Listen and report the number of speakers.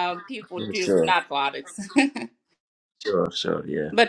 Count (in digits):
2